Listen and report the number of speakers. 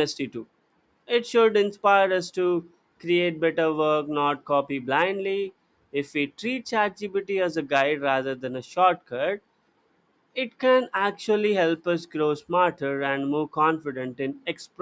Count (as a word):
one